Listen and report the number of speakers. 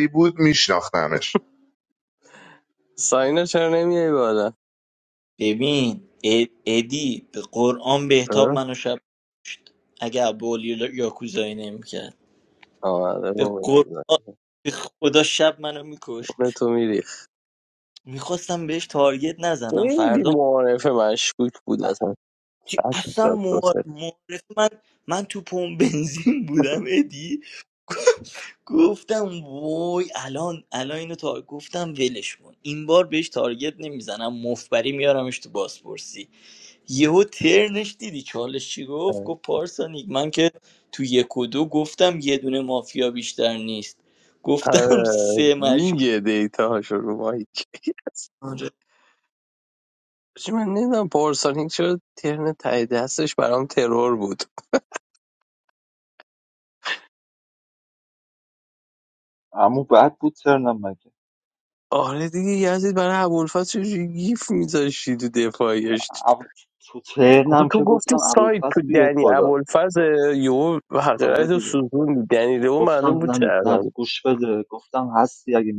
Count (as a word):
four